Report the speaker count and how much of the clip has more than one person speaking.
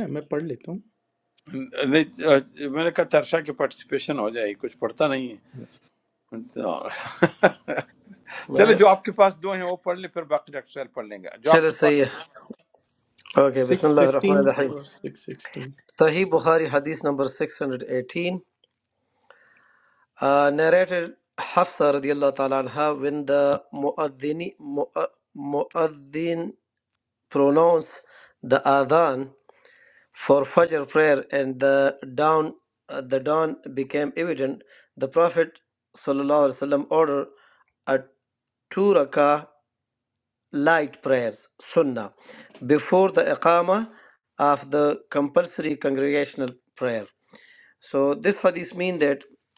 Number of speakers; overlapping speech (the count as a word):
three, about 4%